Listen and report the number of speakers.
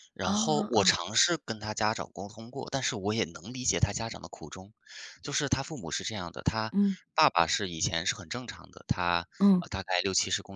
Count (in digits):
2